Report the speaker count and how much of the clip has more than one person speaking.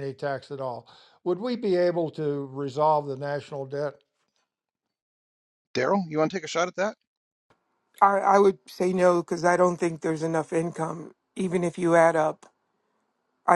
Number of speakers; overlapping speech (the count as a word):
three, no overlap